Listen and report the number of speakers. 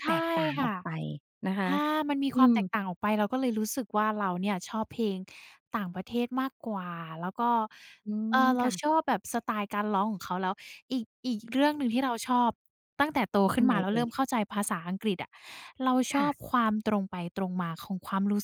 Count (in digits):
2